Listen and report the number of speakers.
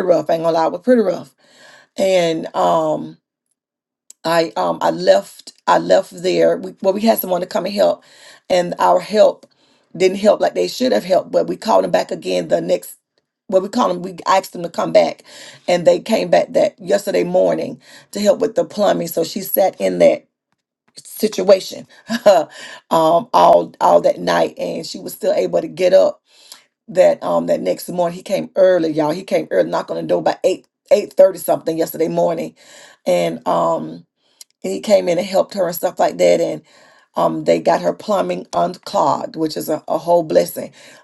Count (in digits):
1